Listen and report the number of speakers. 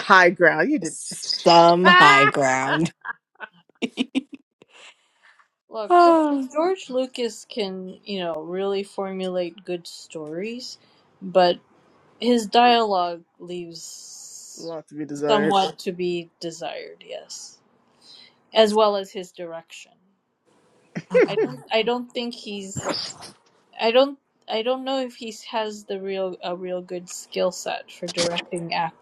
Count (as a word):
three